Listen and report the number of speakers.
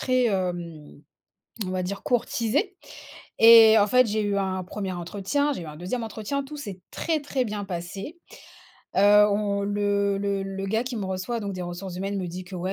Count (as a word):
one